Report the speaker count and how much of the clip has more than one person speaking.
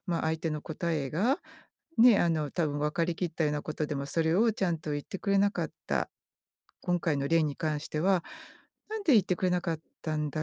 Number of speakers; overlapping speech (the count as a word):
one, no overlap